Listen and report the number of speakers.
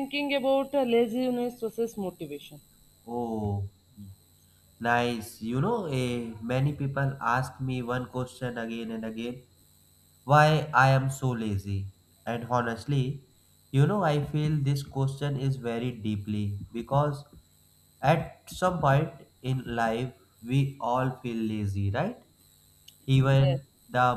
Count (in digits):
2